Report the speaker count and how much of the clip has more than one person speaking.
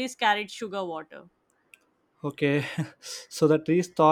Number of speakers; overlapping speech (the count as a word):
two, no overlap